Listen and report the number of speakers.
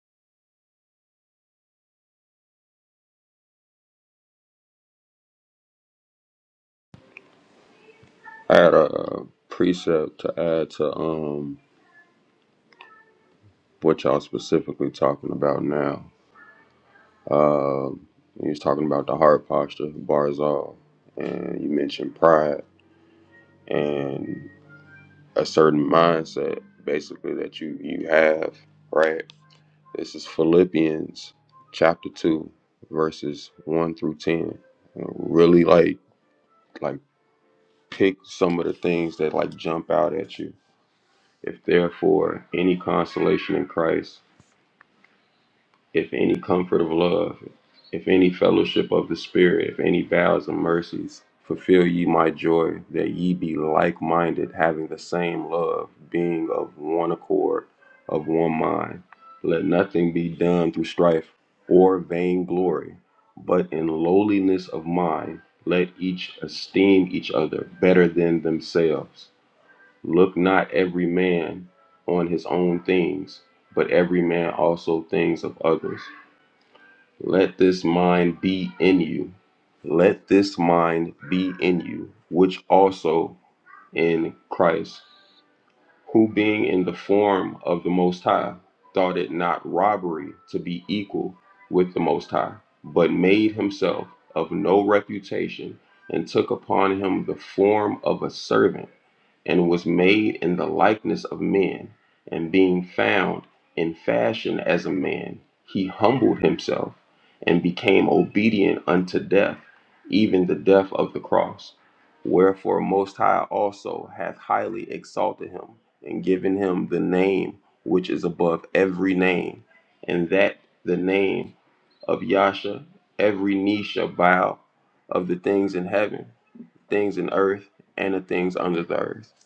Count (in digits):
1